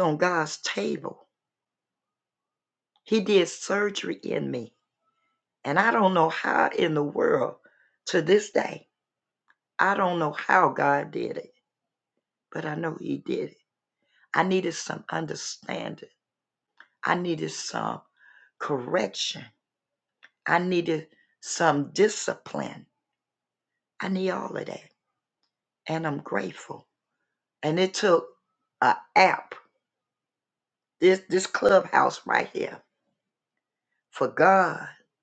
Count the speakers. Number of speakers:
one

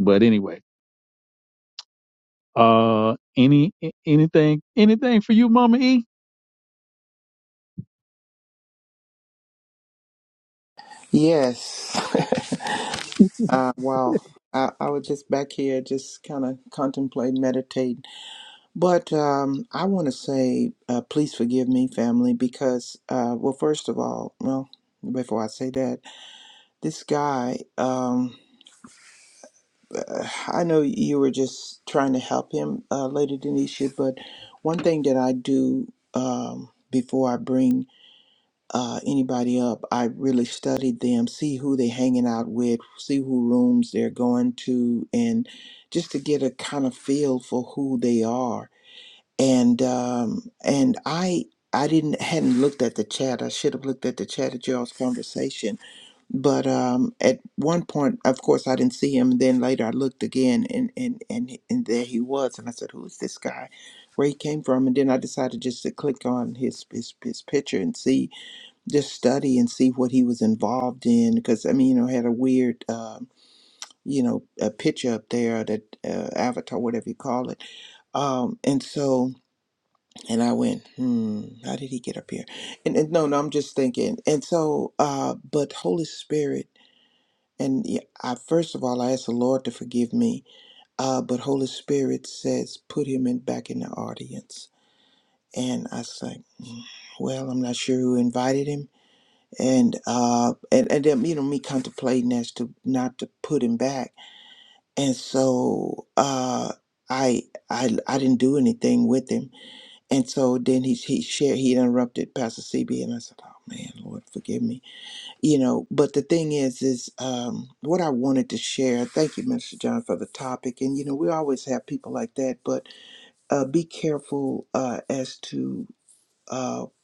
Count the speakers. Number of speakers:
two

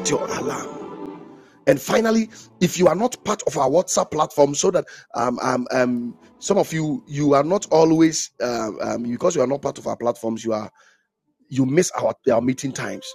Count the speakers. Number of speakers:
one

